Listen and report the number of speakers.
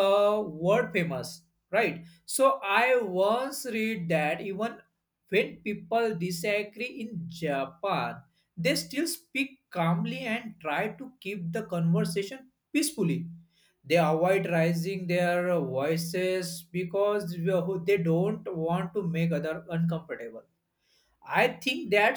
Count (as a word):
one